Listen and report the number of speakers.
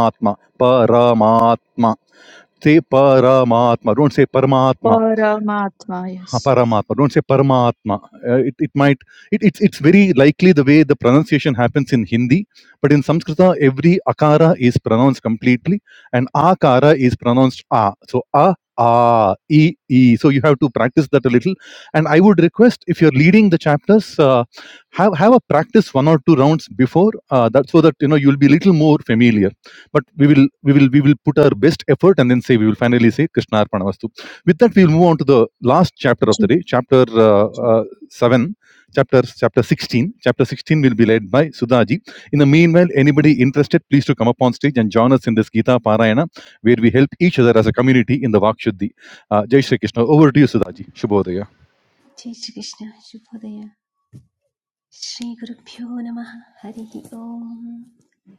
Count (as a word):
three